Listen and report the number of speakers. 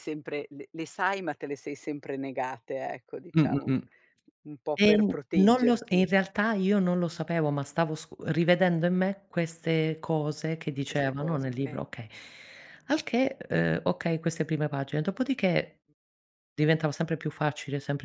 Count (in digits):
2